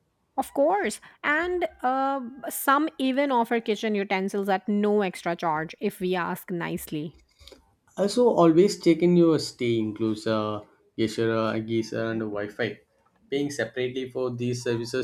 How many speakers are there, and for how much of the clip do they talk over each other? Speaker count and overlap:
two, no overlap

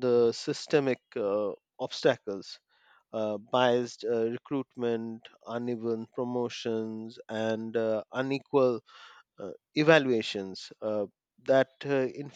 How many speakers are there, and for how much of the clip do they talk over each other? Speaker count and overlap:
one, no overlap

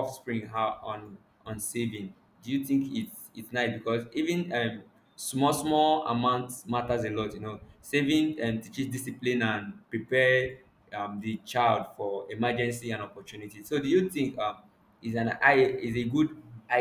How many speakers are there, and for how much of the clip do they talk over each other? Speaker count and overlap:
one, no overlap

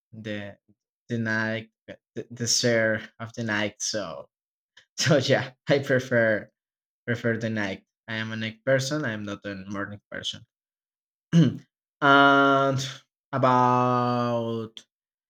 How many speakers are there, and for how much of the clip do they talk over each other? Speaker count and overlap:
one, no overlap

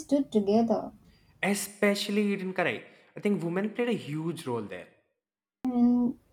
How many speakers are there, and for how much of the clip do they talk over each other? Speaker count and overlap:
two, no overlap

